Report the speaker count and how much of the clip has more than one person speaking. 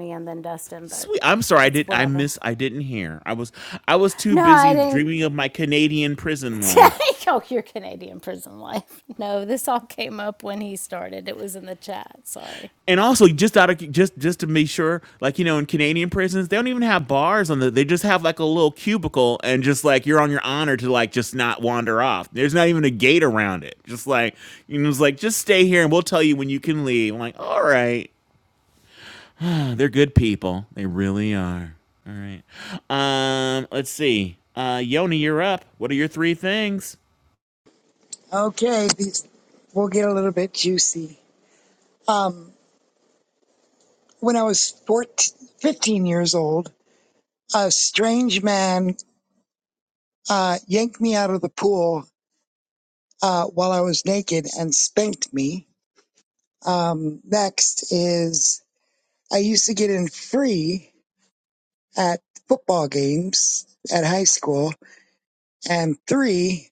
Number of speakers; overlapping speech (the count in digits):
3, about 2%